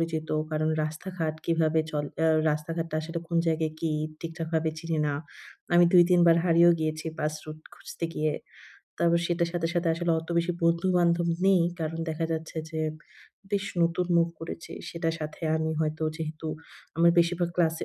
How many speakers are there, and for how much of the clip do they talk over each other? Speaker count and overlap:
one, no overlap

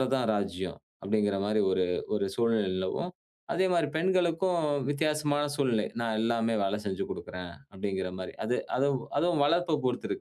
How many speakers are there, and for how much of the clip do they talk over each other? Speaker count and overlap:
one, no overlap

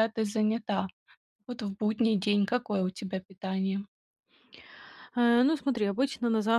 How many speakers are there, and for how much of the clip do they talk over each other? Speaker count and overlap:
two, no overlap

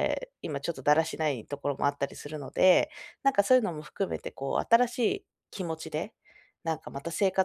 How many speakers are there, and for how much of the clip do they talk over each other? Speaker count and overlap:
one, no overlap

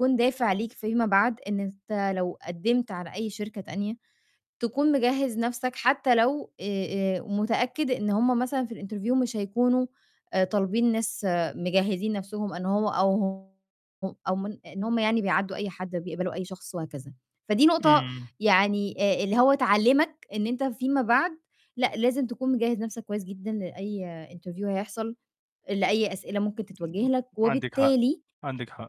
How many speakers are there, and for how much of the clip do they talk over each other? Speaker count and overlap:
two, about 4%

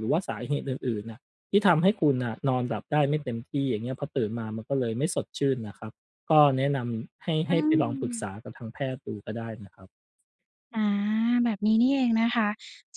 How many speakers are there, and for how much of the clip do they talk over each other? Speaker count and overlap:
two, about 2%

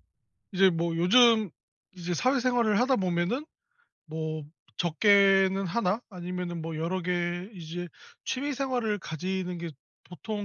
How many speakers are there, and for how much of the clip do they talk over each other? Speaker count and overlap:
one, no overlap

